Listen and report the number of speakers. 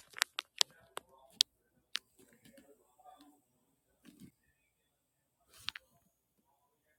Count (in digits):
0